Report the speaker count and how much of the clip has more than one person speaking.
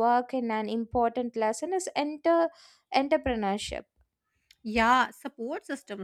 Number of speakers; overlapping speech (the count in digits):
2, no overlap